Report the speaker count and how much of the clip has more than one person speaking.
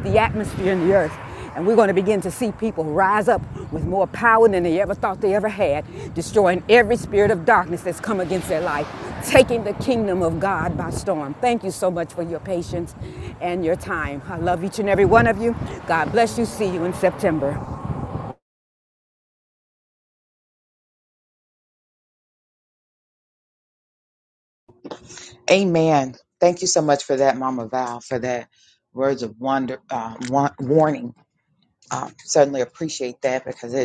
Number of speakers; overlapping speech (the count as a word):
two, no overlap